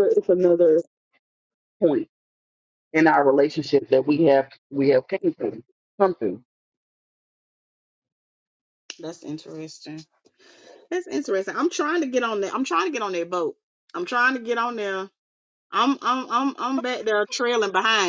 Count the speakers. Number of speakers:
2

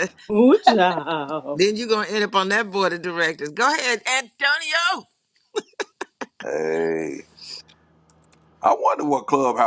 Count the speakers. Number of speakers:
3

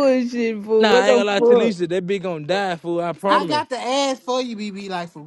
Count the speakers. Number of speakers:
3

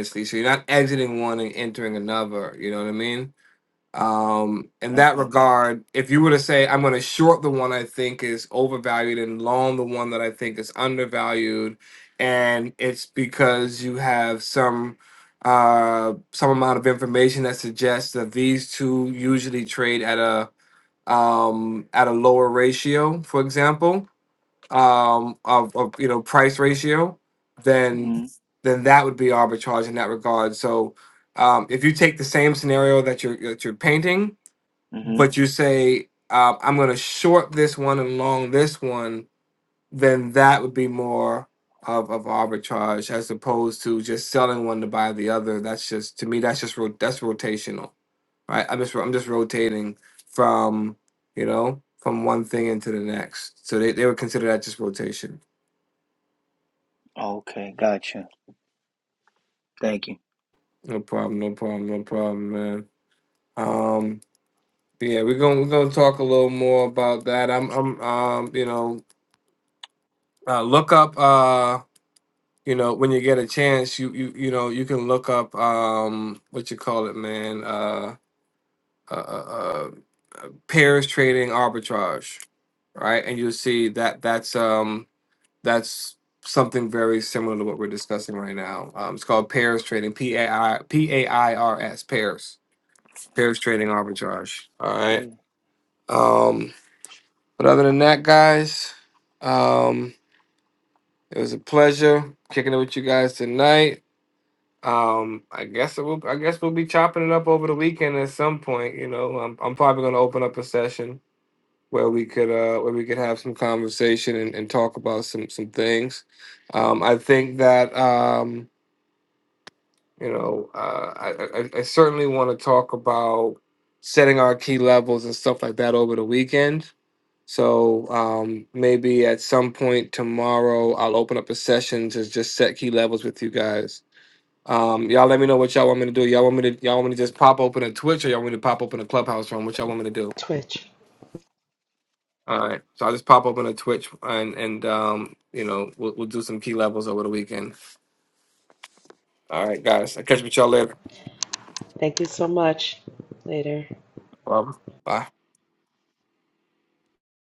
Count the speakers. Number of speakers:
3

